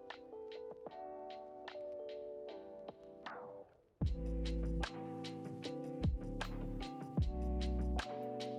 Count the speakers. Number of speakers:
zero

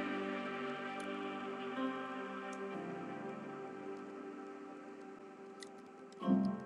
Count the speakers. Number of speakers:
zero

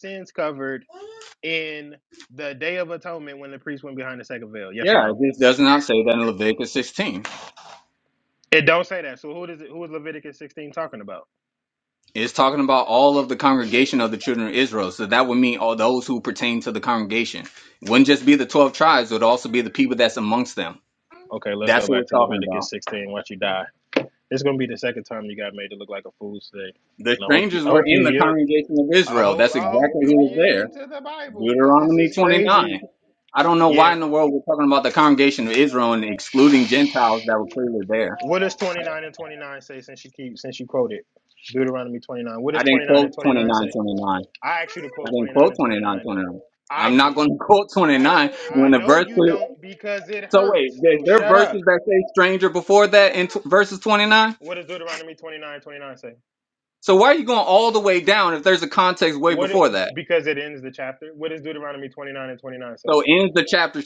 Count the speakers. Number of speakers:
two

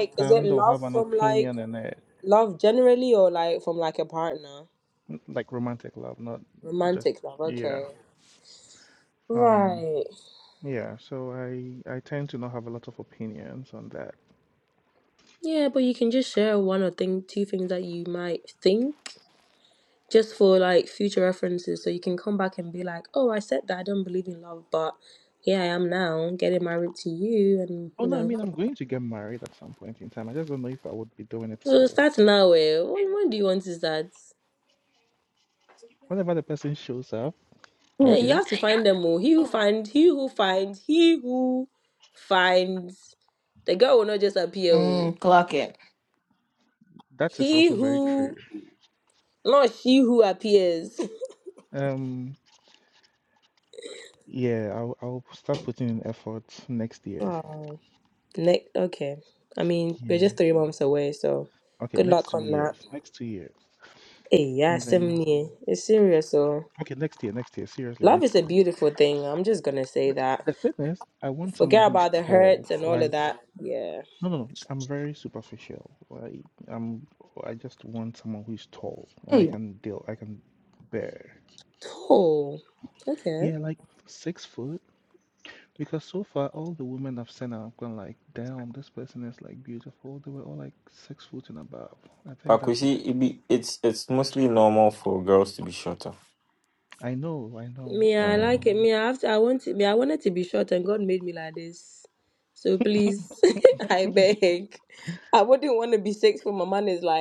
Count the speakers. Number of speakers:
four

